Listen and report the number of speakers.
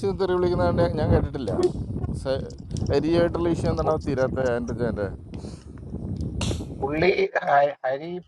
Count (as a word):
two